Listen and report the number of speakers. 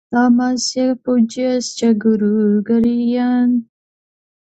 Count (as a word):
one